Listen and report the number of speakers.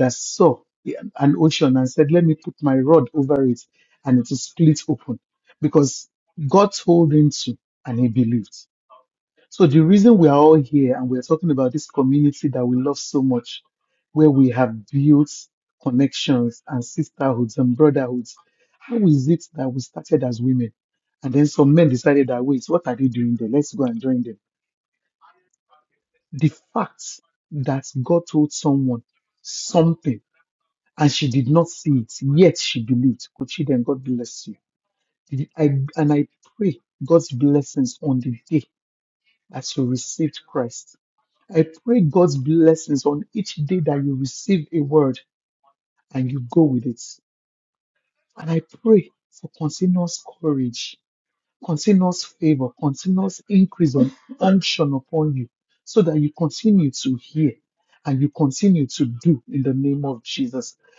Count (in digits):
1